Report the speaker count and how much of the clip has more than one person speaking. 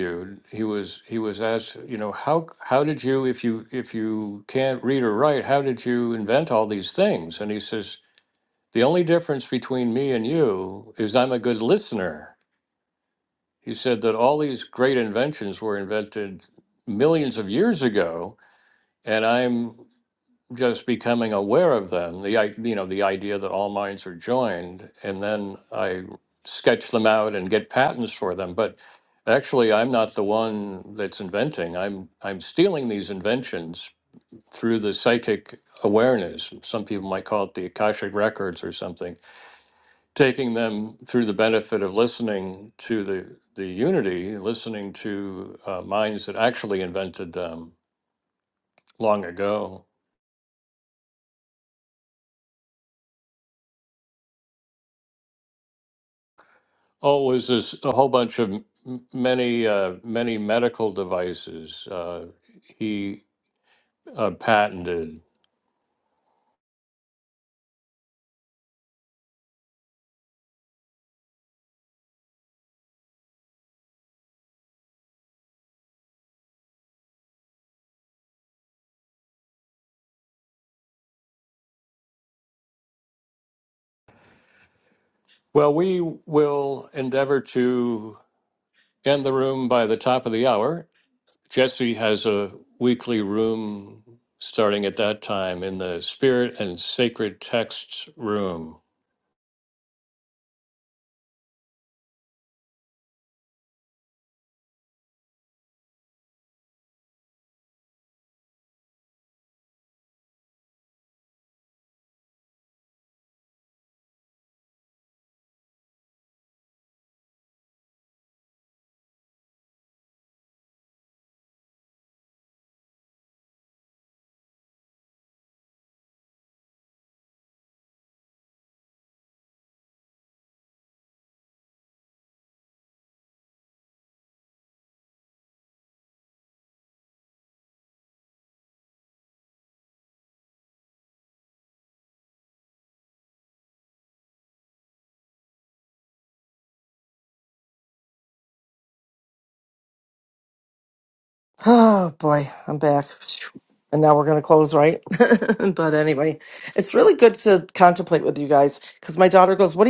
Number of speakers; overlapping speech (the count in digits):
2, no overlap